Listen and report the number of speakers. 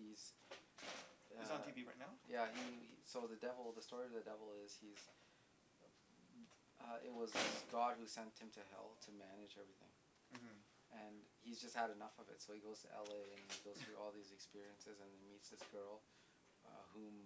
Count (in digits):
2